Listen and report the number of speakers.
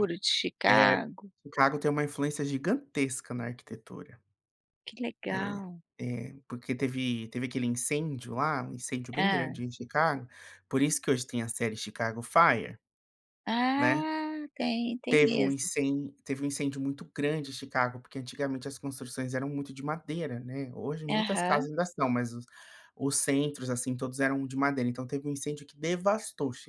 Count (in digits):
2